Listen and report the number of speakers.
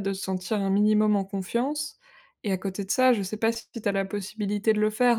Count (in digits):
1